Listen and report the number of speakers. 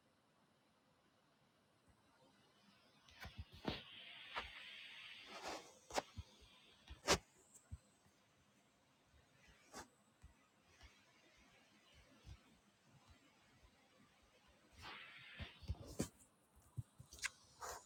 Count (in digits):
0